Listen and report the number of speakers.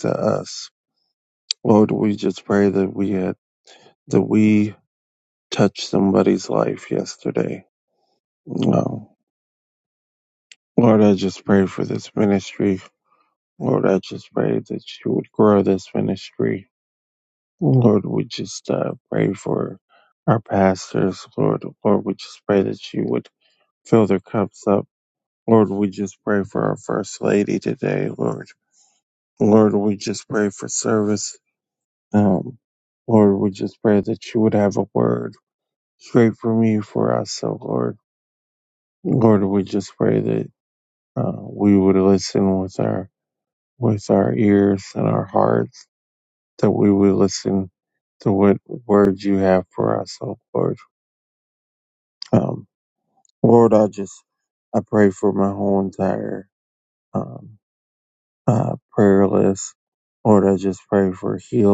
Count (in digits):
1